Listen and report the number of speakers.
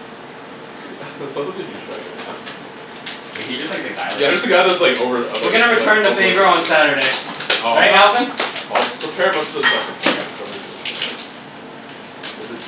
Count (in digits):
3